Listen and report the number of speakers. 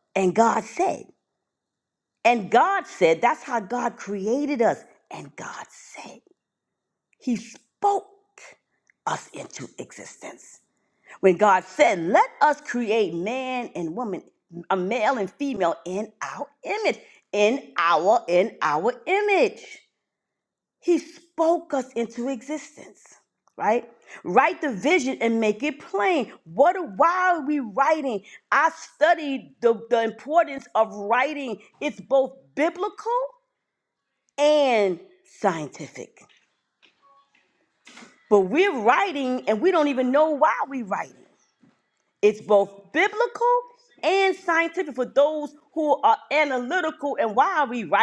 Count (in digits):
1